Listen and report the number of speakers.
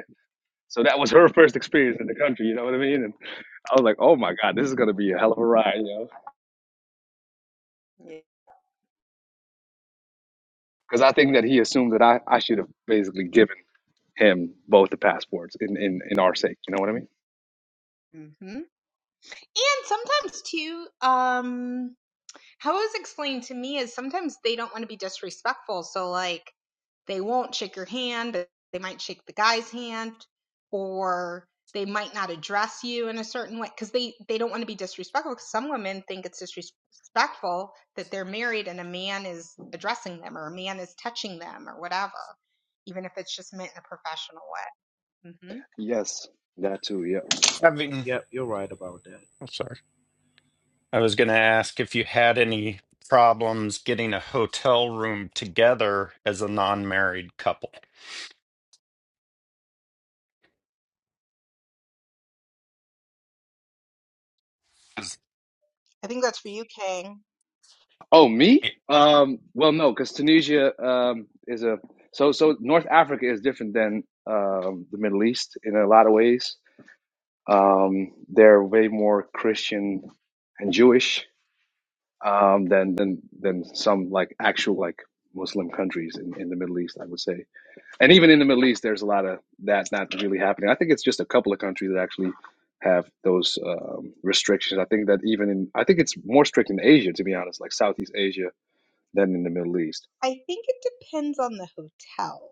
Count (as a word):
four